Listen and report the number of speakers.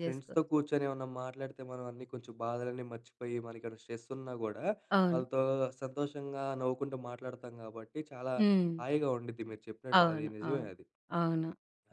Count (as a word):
two